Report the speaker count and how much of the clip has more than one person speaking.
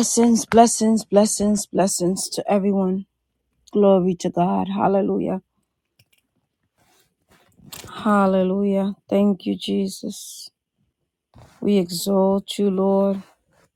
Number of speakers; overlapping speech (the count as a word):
one, no overlap